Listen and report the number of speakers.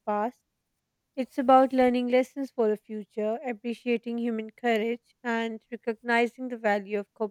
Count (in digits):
1